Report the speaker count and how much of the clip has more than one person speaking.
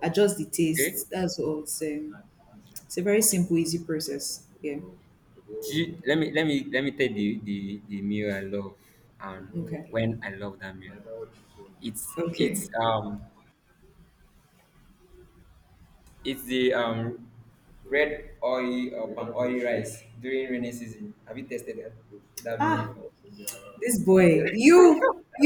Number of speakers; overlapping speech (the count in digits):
2, about 3%